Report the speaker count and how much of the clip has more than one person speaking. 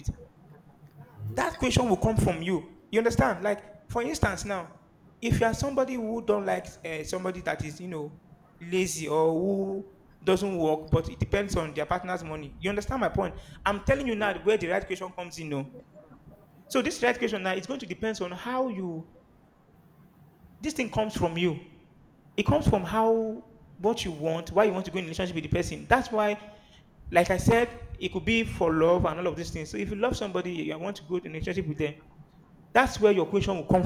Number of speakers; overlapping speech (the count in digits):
1, no overlap